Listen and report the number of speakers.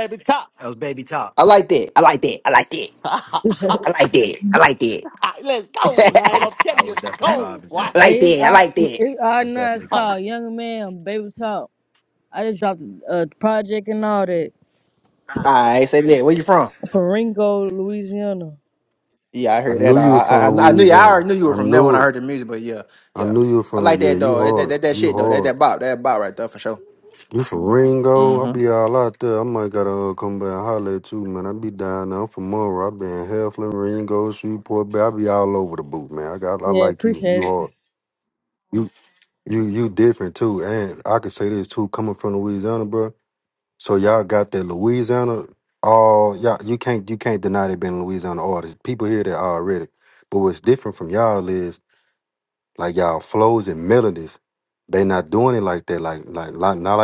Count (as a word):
five